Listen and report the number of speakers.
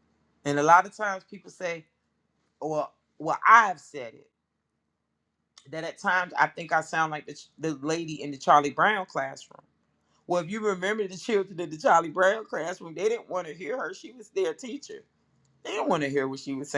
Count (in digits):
1